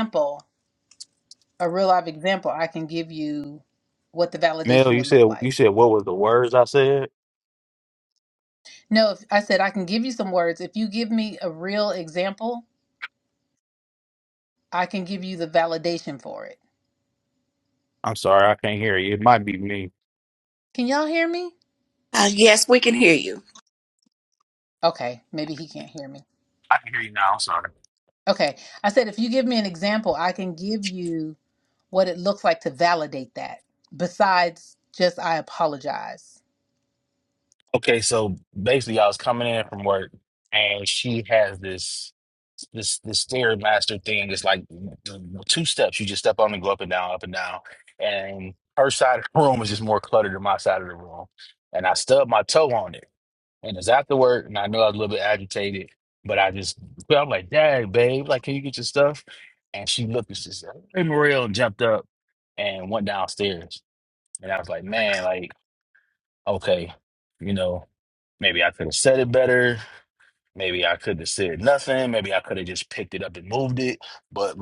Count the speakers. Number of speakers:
3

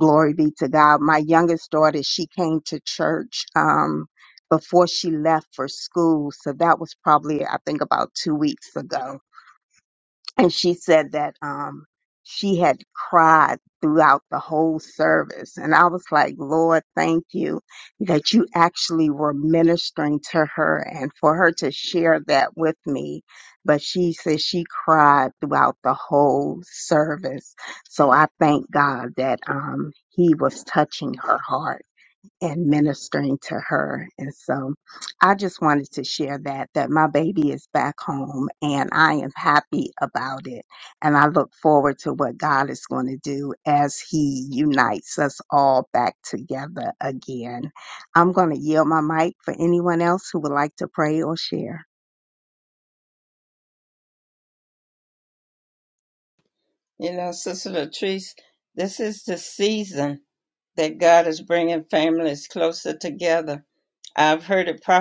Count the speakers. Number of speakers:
2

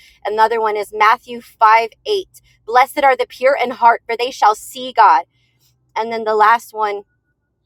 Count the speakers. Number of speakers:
1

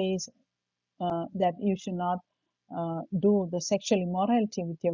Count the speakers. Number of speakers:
1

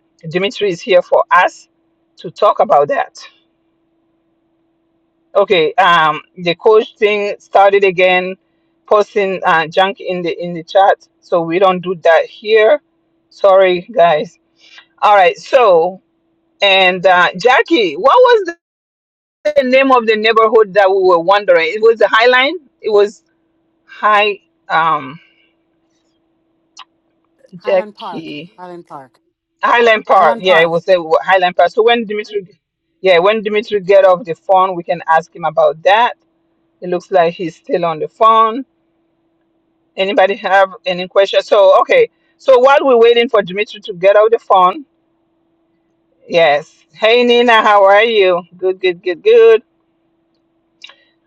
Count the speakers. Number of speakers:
2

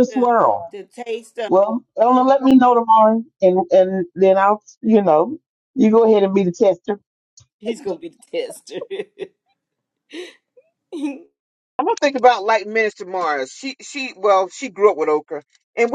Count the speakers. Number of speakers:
3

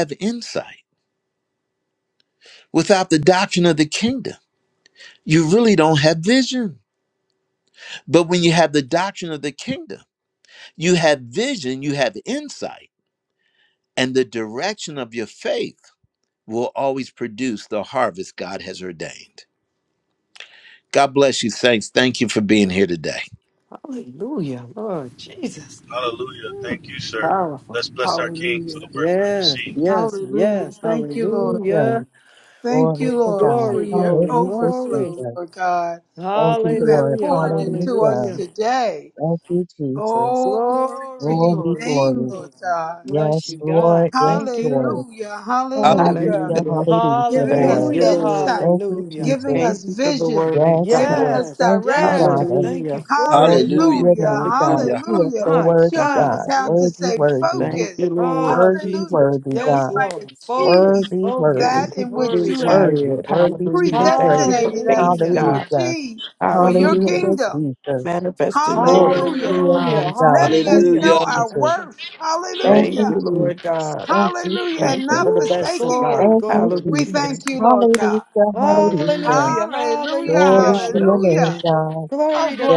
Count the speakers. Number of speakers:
6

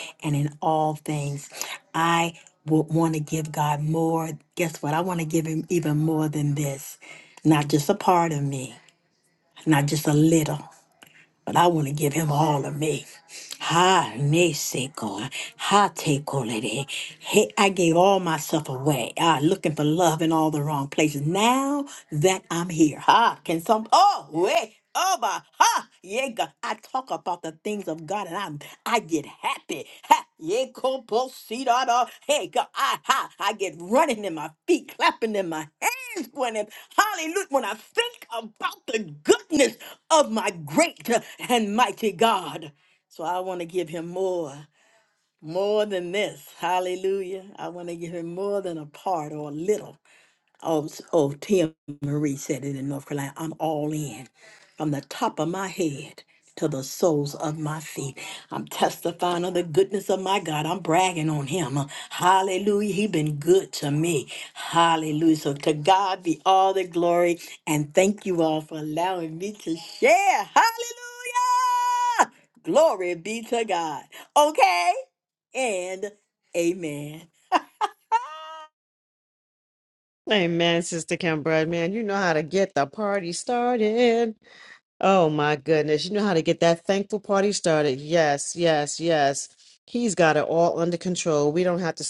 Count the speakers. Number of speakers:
2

